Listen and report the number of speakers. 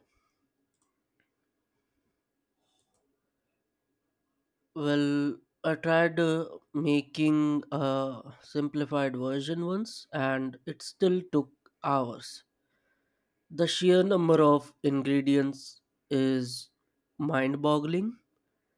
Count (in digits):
1